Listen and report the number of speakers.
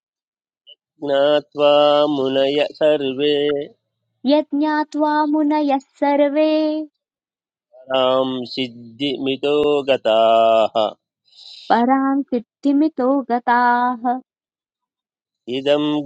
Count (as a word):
two